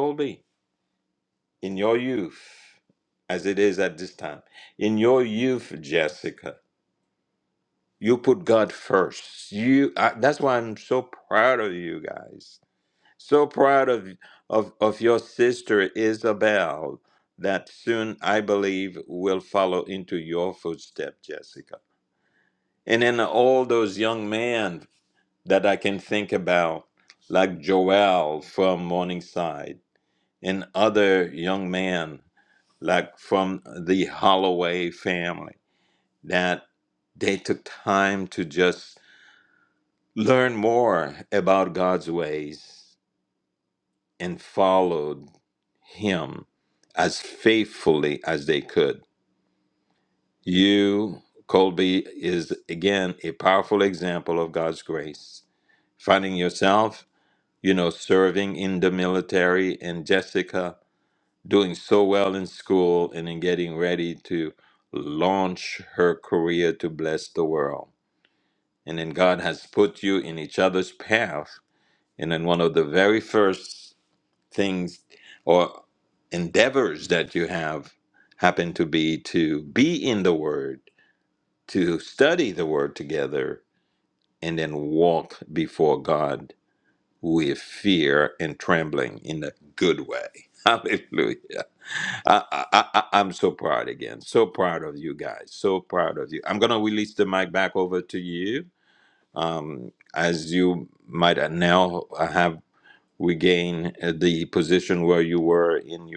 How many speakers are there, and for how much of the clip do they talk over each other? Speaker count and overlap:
one, no overlap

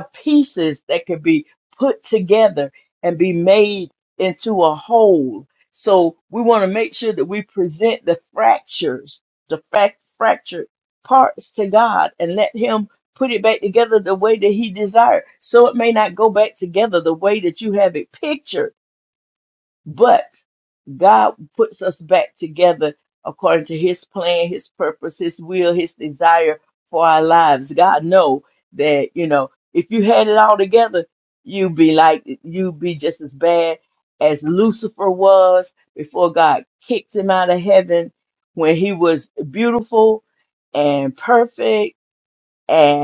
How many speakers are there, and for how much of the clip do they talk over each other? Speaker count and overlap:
one, no overlap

